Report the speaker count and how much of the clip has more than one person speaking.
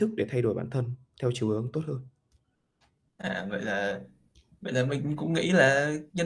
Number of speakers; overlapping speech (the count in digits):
2, no overlap